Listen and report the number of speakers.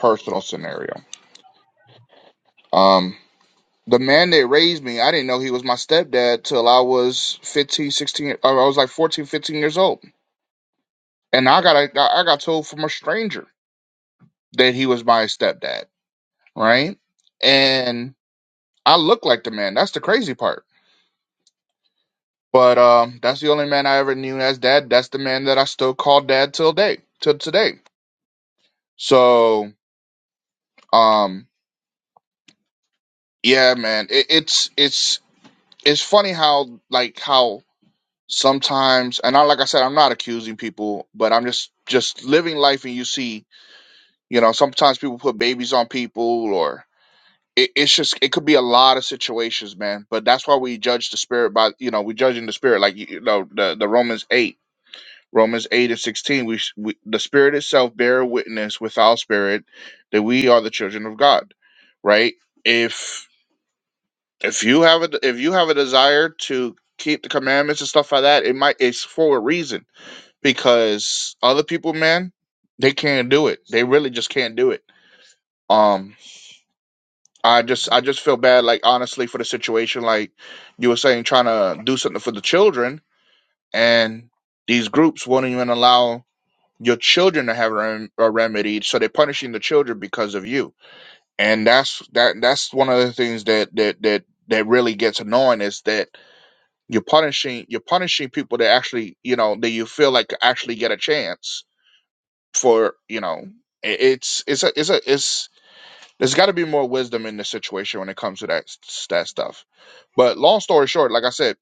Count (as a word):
one